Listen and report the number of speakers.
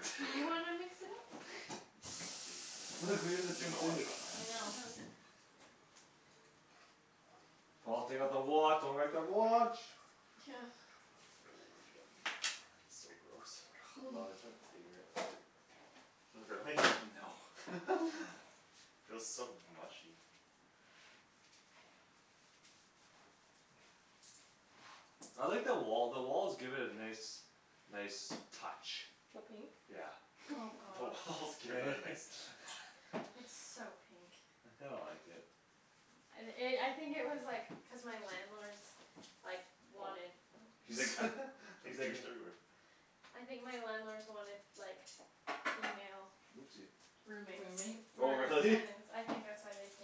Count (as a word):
four